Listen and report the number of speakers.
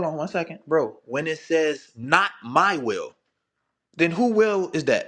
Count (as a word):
one